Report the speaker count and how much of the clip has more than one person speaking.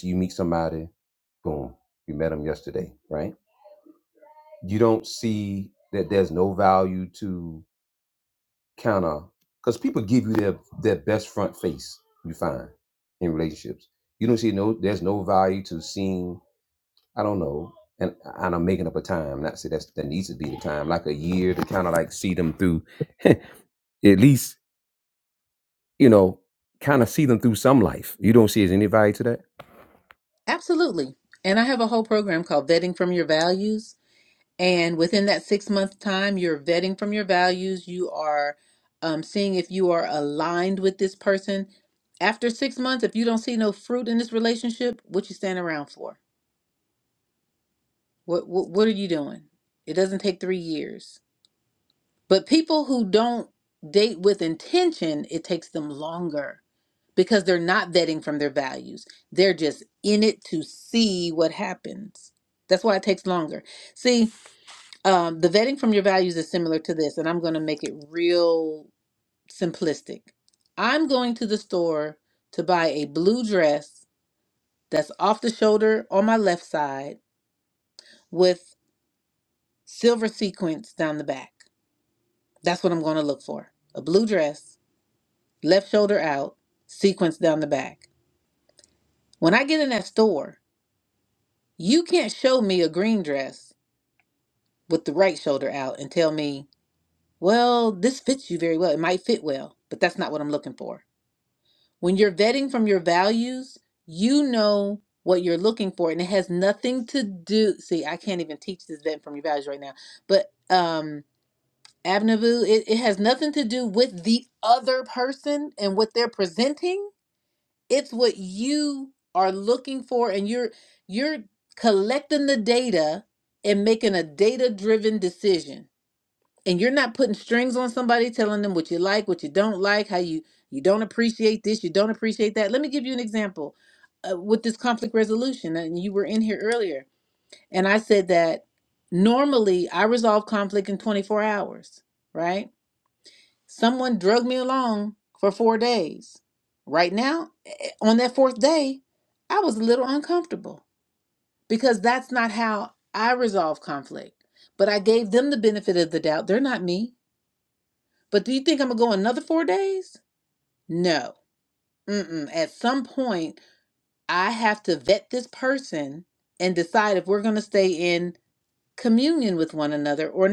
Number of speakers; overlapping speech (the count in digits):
2, no overlap